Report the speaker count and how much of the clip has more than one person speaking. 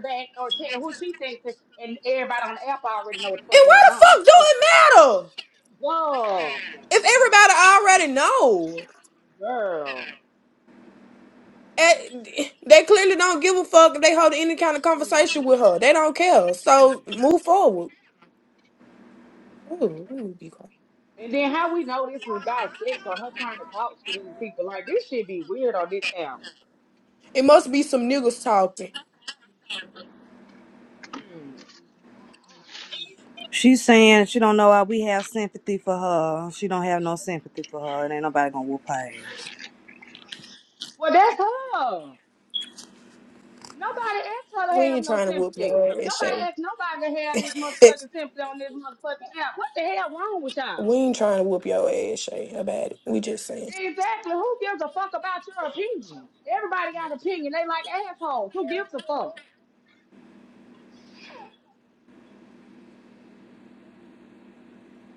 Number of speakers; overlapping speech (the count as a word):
three, about 4%